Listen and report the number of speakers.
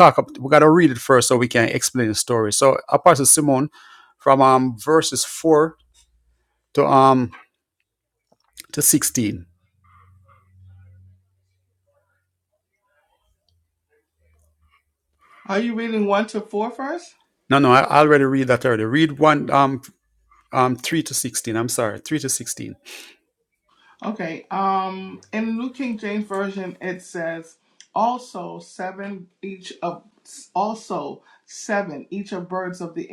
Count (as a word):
two